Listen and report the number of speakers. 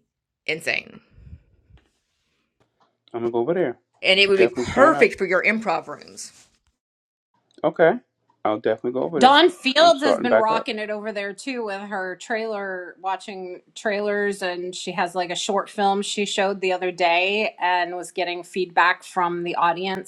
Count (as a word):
three